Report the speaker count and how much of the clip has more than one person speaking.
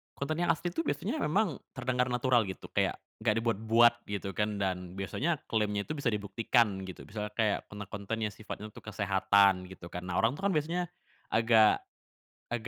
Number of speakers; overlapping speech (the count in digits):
1, no overlap